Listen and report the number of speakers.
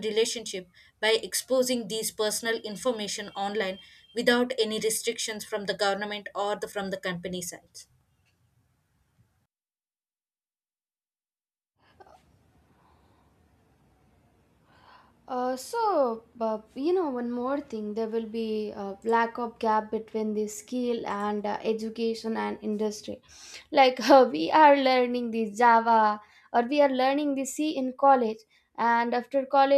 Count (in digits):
2